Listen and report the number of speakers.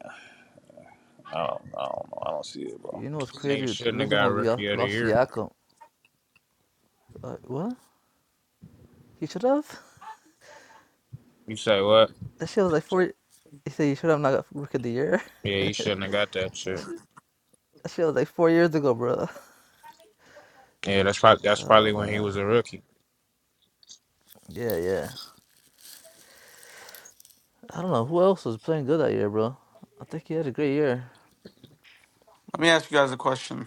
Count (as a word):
four